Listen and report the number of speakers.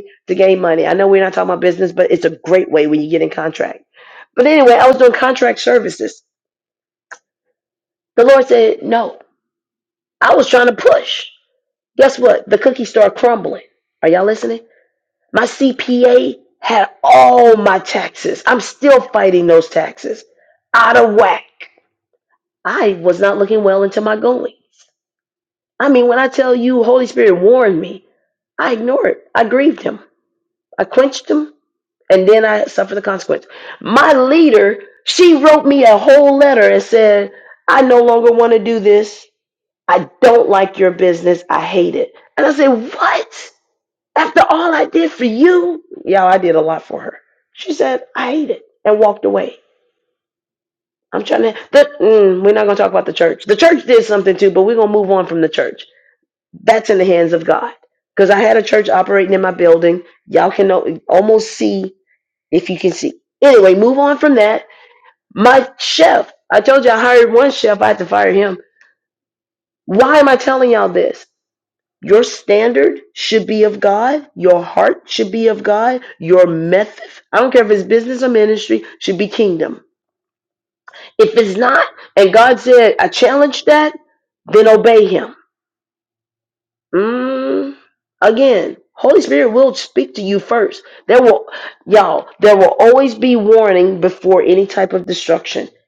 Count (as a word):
one